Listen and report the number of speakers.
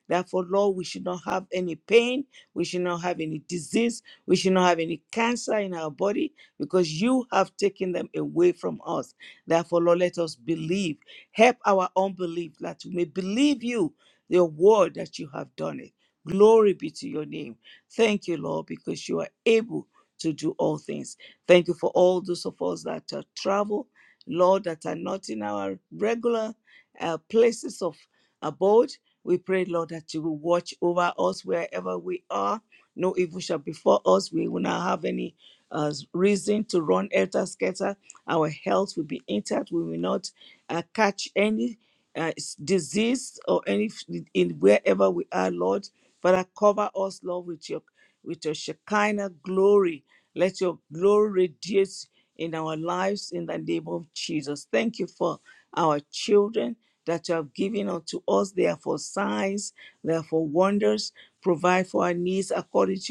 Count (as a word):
one